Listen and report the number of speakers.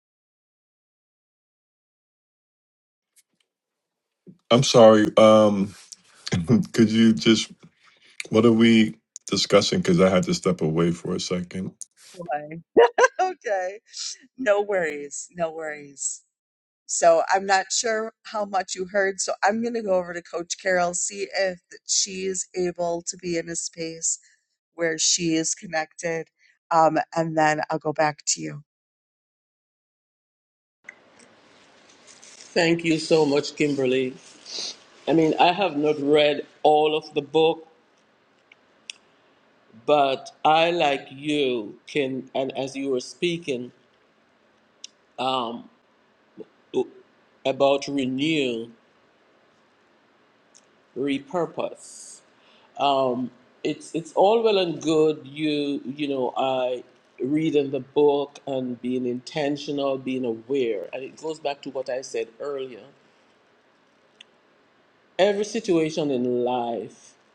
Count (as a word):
three